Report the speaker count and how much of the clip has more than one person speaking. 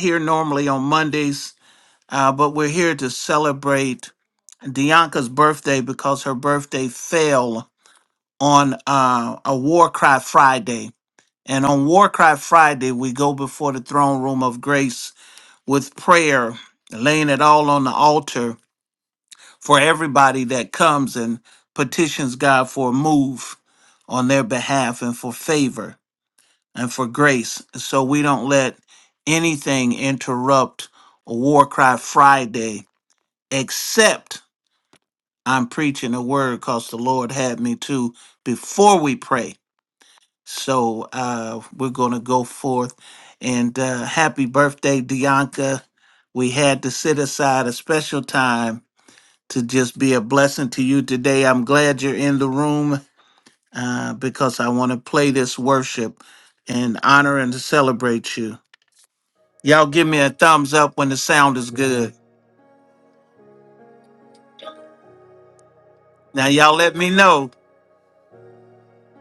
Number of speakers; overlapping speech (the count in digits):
1, no overlap